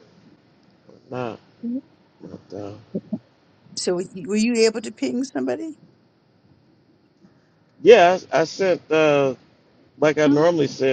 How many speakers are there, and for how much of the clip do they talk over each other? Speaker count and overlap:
two, about 3%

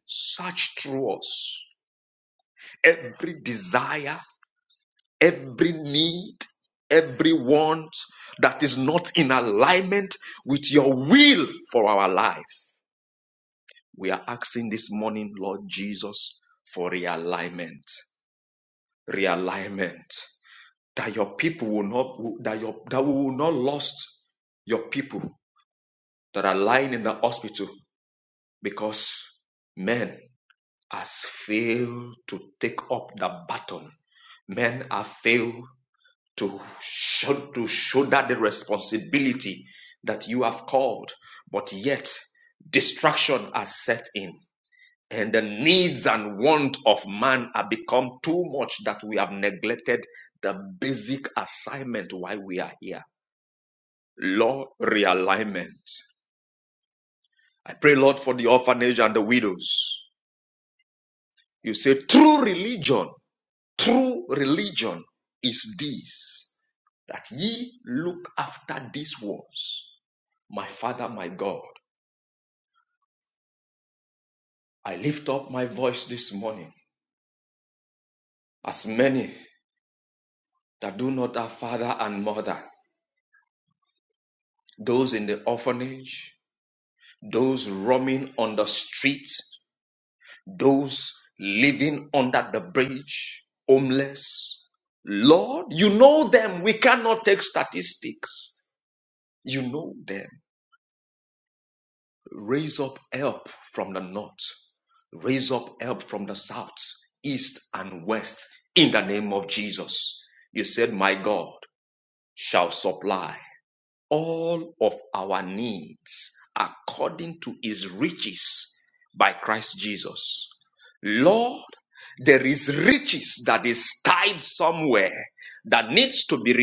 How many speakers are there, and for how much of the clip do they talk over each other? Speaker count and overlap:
one, no overlap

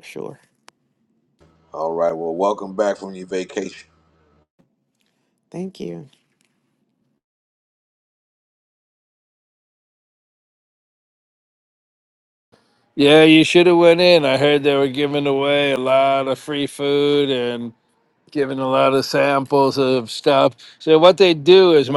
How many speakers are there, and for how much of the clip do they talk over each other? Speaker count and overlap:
three, no overlap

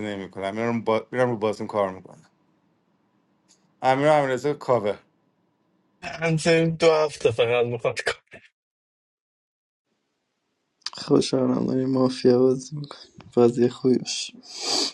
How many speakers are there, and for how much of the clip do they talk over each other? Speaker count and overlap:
three, no overlap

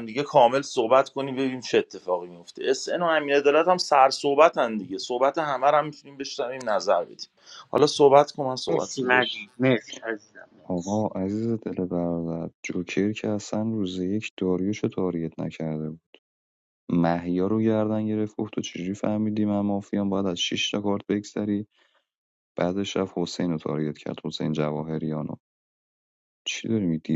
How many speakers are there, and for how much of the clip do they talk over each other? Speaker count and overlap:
three, about 3%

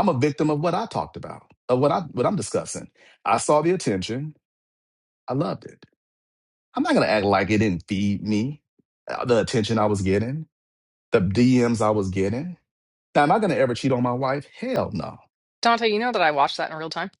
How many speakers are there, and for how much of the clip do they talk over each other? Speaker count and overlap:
two, no overlap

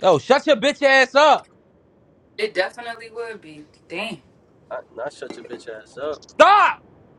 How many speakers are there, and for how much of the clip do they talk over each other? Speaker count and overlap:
three, no overlap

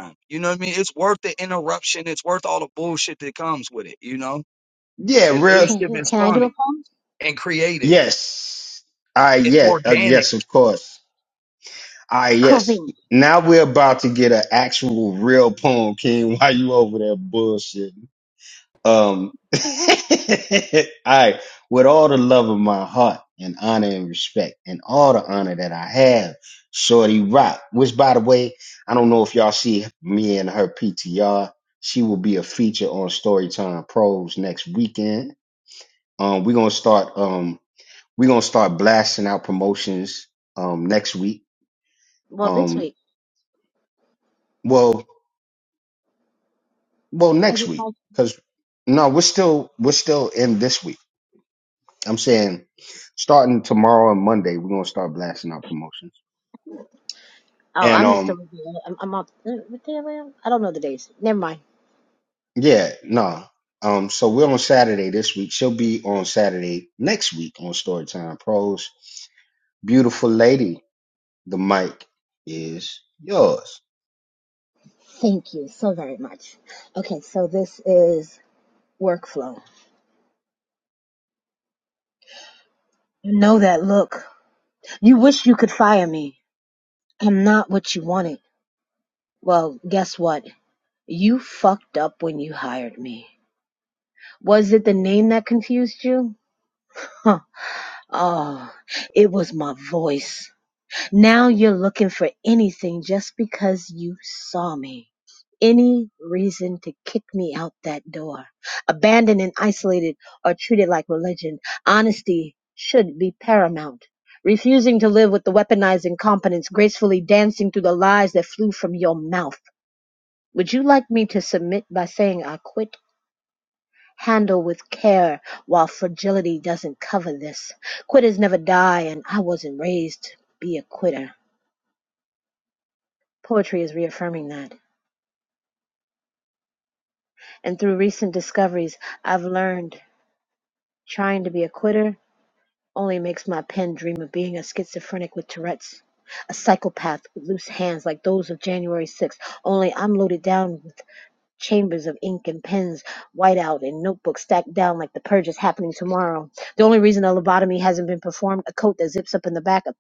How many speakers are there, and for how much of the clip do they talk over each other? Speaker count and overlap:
three, about 2%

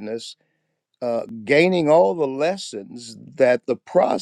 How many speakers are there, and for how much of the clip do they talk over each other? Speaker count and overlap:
one, no overlap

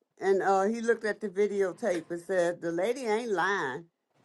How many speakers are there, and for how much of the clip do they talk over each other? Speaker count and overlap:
one, no overlap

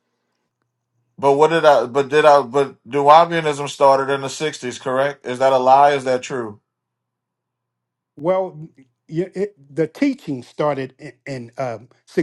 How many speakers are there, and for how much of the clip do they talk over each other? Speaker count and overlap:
two, no overlap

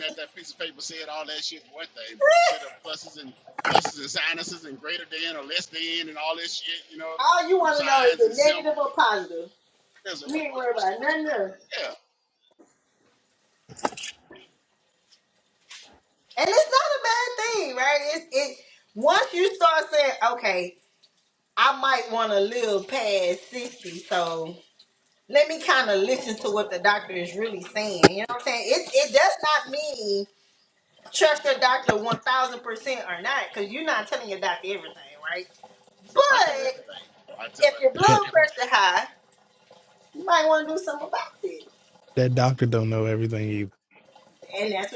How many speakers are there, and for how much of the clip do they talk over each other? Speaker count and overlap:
three, about 9%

